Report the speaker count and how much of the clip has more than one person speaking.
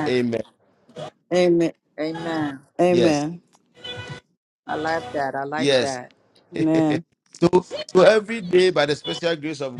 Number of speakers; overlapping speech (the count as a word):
three, about 7%